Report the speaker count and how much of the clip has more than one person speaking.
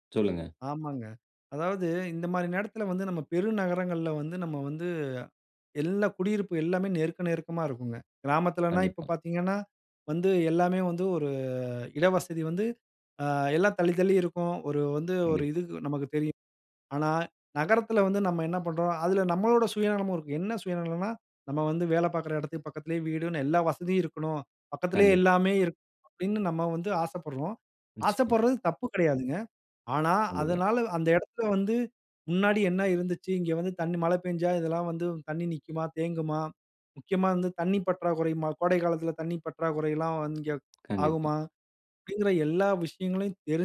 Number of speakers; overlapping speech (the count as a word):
two, about 4%